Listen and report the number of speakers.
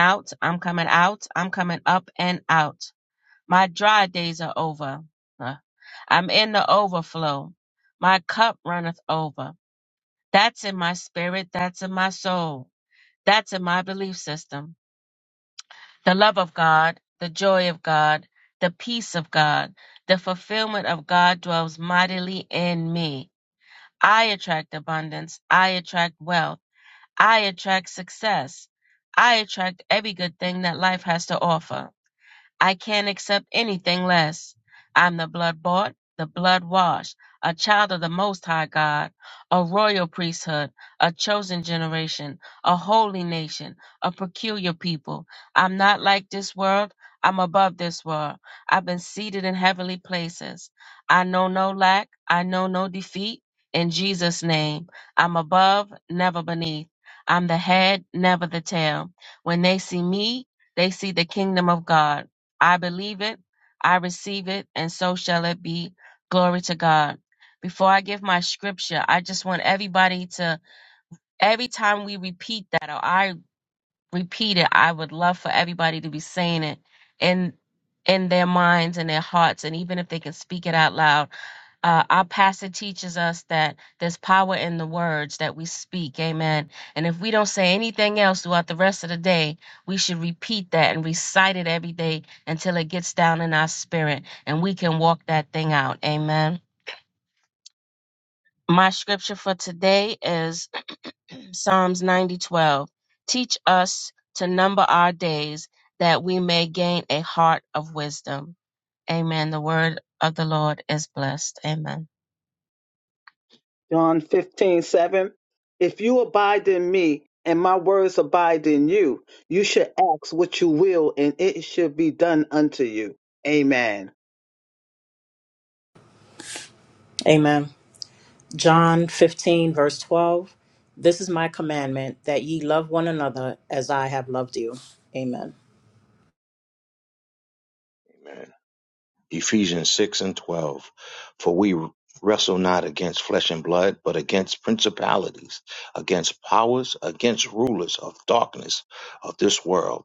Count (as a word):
four